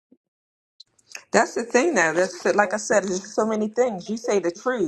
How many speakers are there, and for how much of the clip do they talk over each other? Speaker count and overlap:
one, no overlap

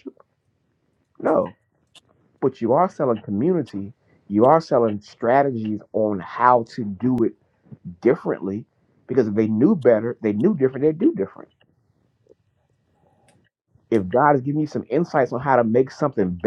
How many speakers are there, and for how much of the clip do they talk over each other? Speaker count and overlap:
one, no overlap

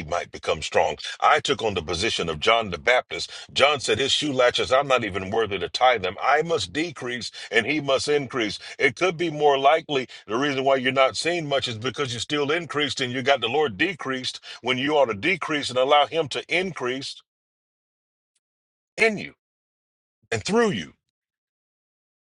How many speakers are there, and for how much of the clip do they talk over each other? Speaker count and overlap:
one, no overlap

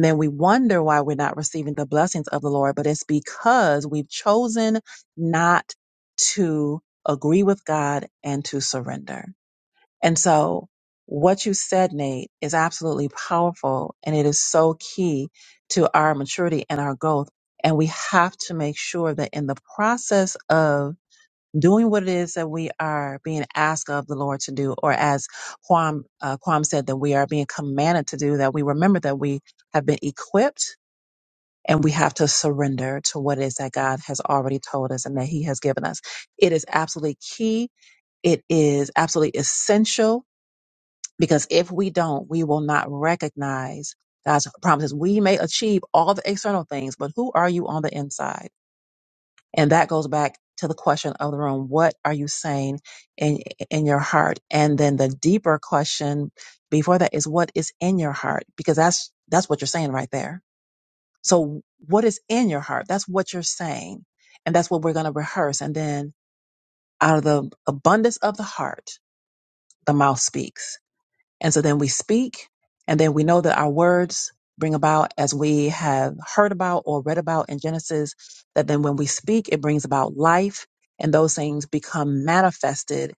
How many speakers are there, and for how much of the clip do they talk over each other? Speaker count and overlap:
one, no overlap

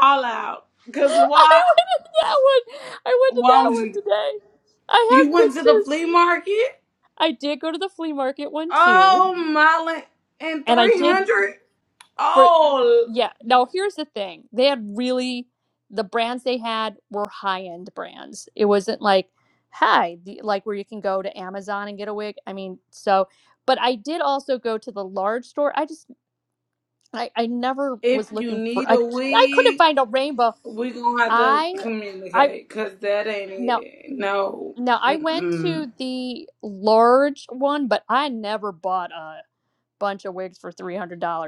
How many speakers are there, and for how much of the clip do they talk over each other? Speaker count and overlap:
two, about 16%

